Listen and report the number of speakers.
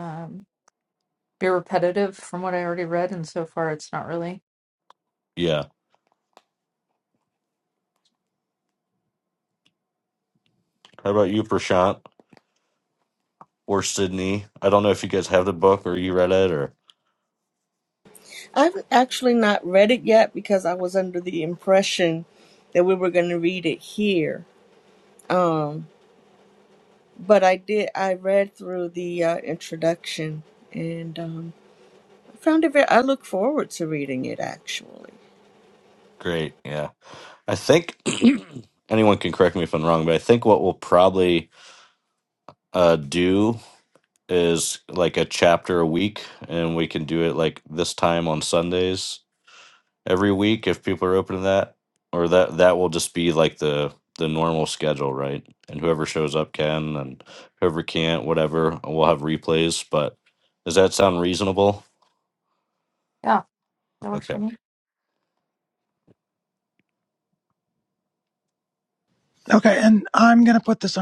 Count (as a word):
four